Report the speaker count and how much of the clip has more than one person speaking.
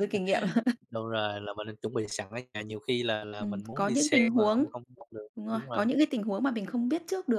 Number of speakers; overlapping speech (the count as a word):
two, about 24%